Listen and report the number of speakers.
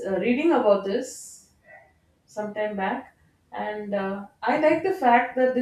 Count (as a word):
one